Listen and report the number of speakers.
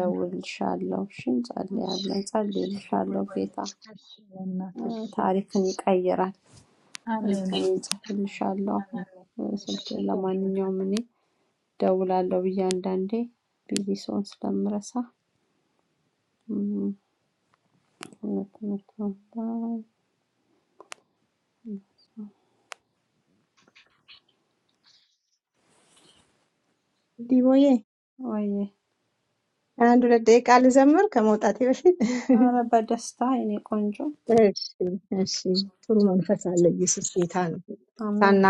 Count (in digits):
3